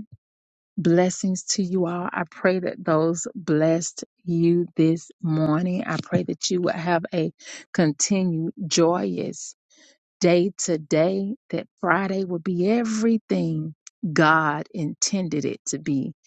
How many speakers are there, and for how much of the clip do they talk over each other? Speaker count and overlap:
1, no overlap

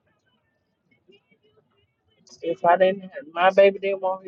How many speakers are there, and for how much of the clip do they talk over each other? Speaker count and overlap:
1, no overlap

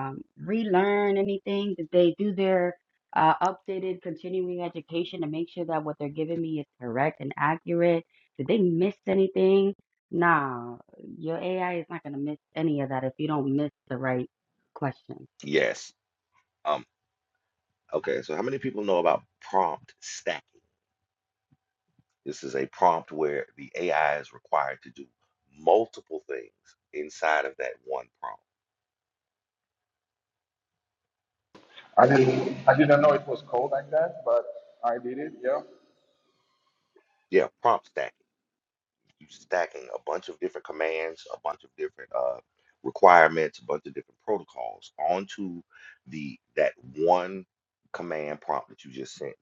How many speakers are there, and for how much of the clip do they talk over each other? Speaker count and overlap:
3, about 1%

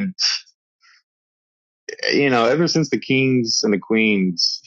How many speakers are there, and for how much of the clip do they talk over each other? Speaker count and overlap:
1, no overlap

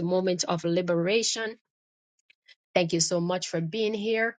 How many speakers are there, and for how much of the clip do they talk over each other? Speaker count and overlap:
1, no overlap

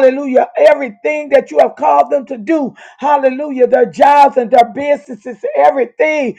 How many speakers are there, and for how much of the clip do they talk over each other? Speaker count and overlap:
1, no overlap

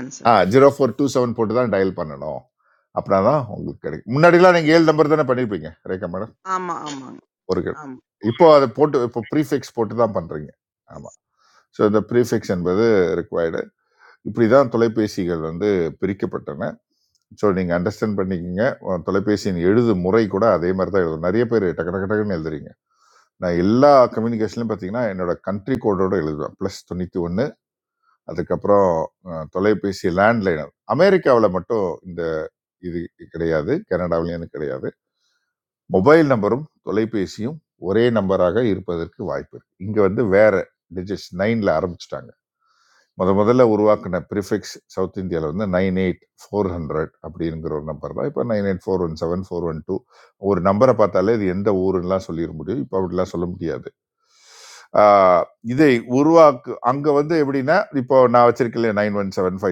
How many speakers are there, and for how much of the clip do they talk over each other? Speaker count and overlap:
2, under 1%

